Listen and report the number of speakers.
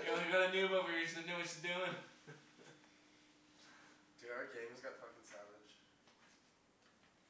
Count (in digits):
2